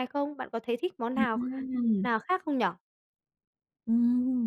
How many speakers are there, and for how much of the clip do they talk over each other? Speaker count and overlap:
two, about 7%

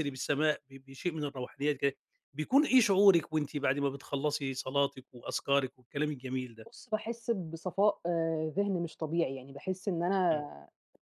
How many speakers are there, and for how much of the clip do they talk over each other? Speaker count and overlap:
two, about 1%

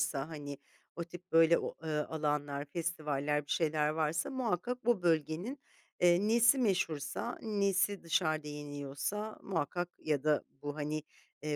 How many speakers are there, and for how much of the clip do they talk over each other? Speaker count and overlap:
one, no overlap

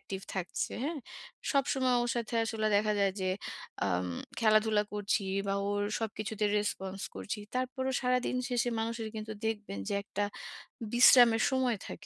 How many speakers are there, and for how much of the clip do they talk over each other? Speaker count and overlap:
one, no overlap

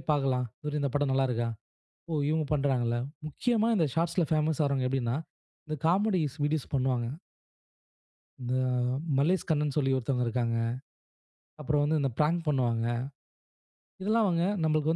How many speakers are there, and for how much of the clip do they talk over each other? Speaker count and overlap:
one, no overlap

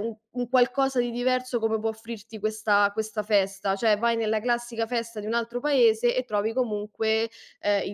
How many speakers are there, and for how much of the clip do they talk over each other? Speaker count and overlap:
one, no overlap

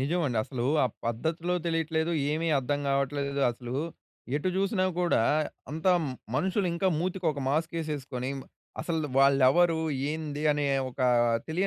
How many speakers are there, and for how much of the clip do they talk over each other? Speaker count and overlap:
one, no overlap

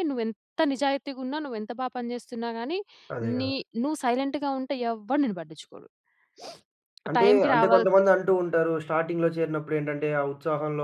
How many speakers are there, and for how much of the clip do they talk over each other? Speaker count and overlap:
two, about 10%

